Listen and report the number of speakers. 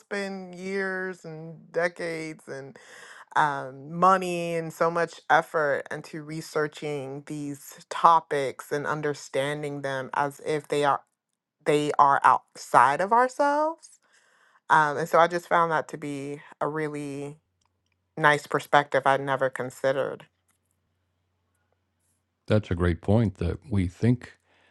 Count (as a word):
two